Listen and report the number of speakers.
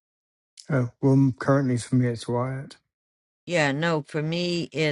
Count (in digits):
2